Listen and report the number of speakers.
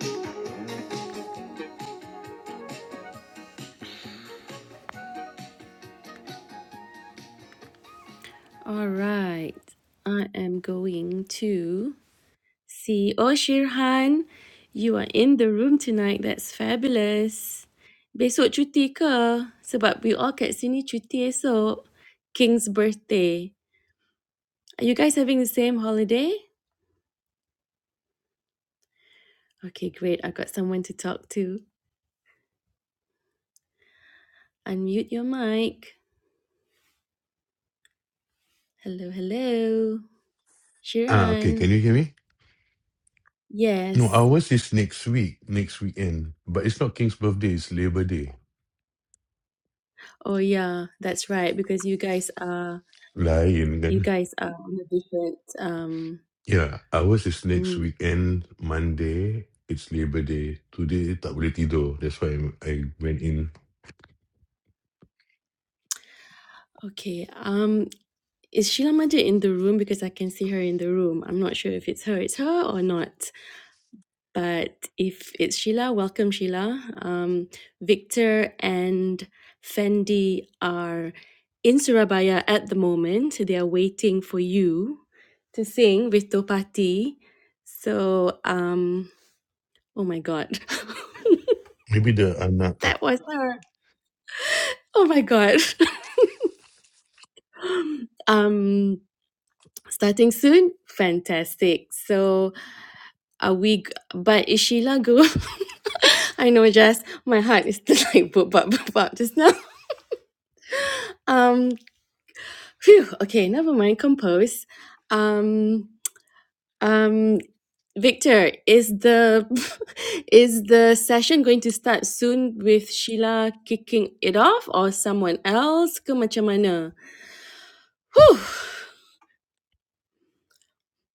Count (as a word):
two